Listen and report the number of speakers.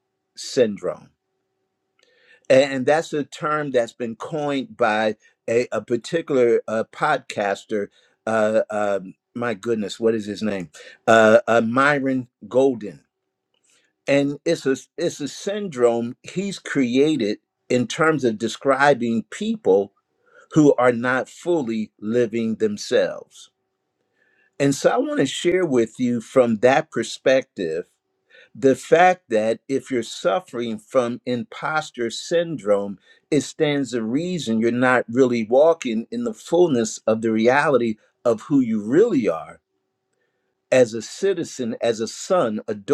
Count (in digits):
1